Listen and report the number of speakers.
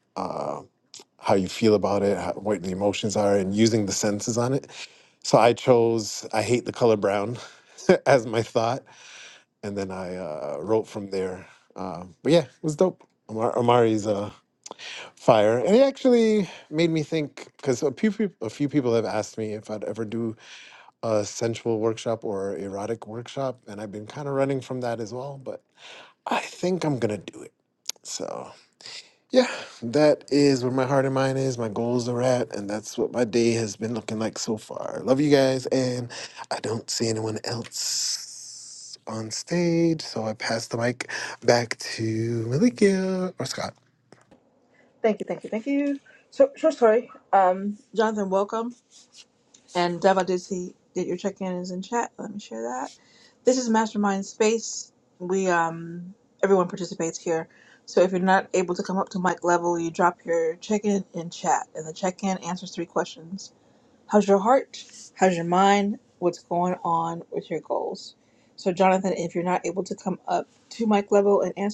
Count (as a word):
two